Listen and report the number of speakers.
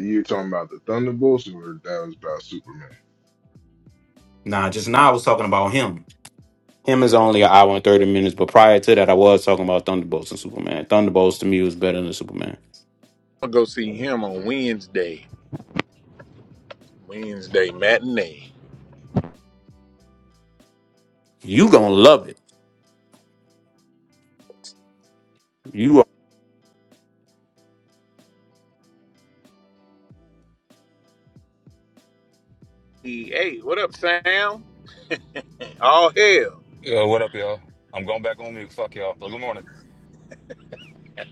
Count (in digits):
4